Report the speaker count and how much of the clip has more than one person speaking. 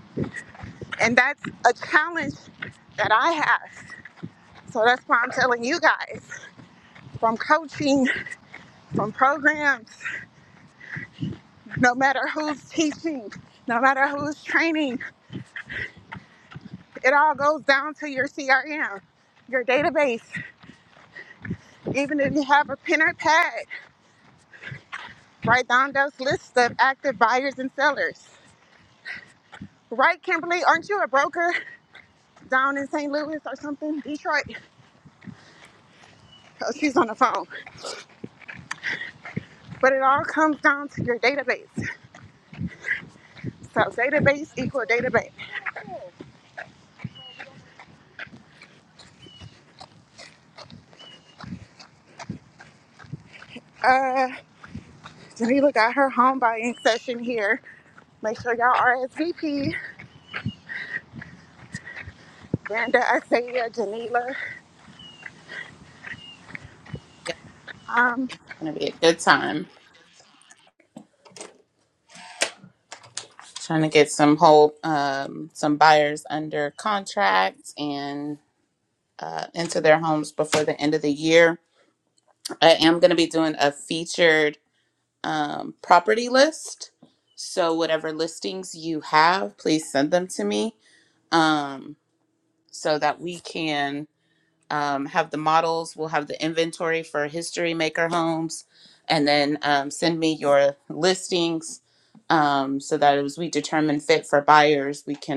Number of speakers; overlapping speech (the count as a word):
two, no overlap